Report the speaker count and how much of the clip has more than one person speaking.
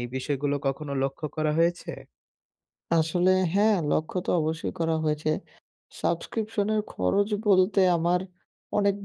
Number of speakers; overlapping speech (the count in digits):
2, no overlap